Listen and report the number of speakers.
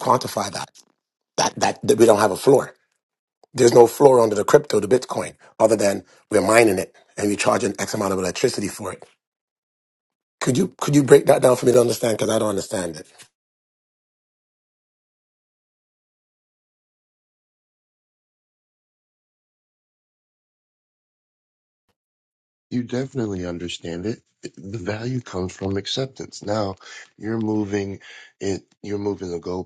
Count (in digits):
2